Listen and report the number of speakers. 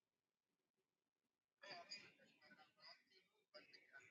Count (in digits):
0